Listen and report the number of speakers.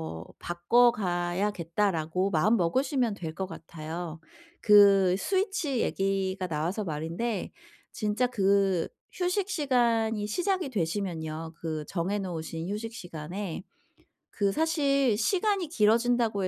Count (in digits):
1